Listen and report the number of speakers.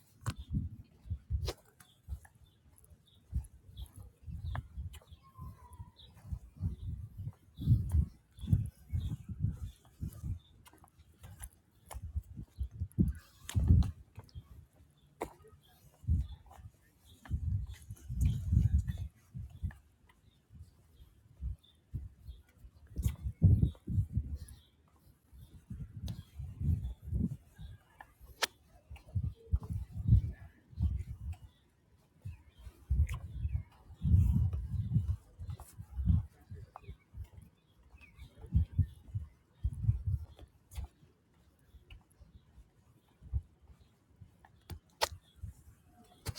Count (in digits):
0